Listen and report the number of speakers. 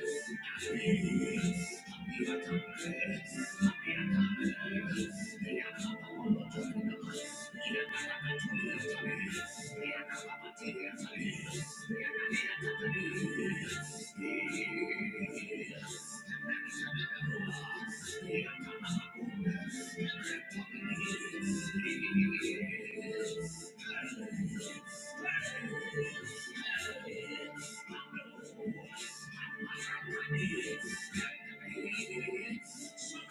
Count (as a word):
zero